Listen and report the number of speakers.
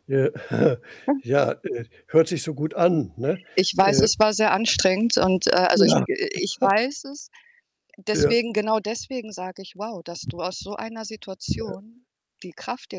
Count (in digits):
2